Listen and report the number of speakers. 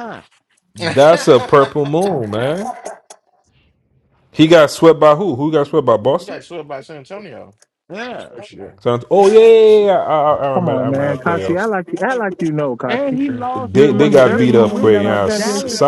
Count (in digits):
4